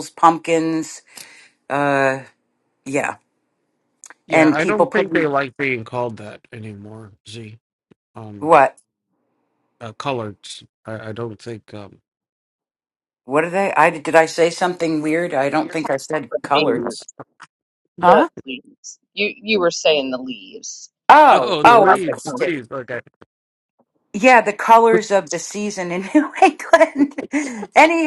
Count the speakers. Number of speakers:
three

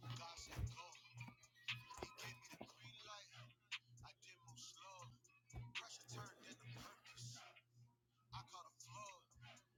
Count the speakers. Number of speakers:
zero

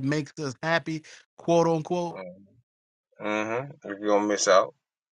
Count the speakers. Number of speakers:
two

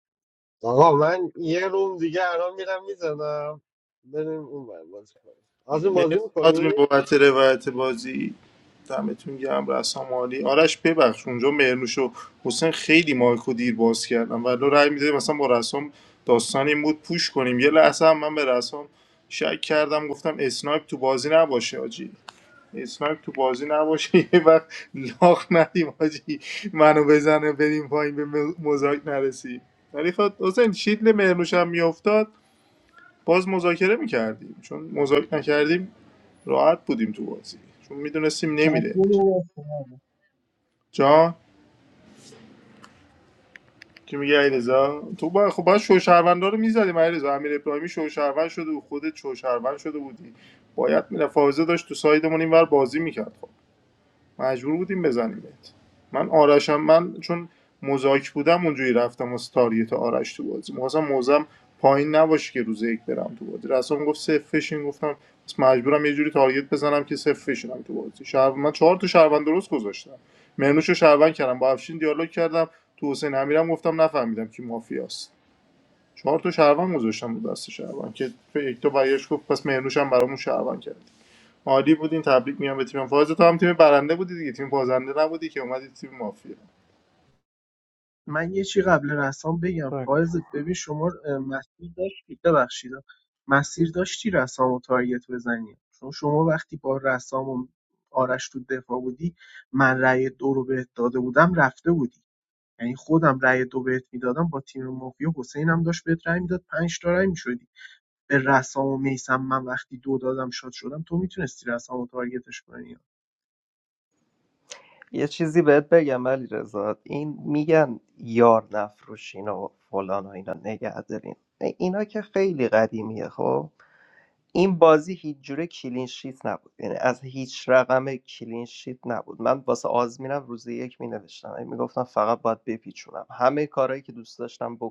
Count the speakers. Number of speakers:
four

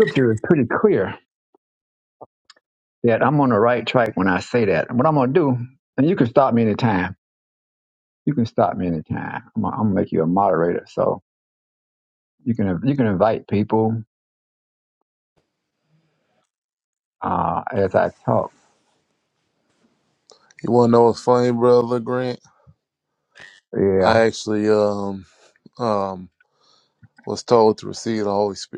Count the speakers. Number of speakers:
two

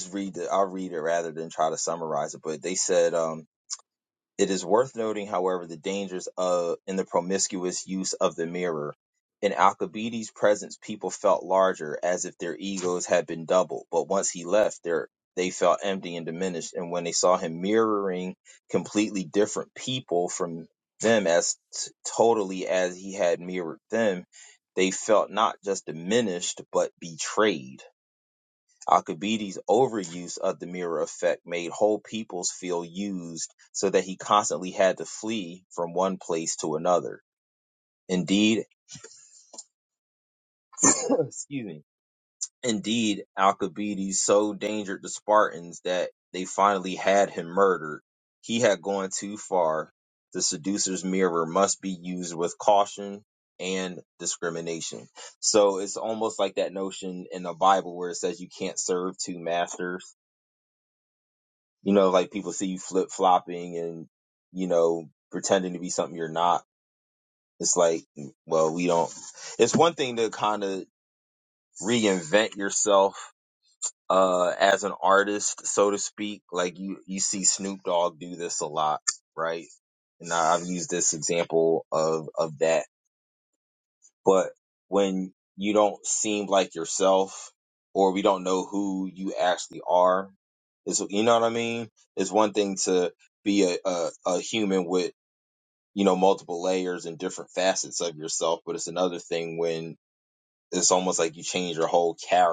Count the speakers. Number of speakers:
one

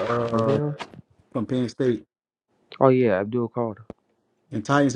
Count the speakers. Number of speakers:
two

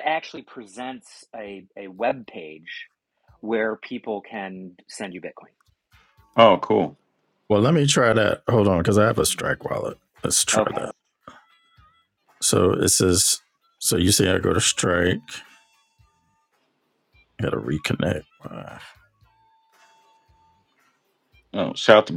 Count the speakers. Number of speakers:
three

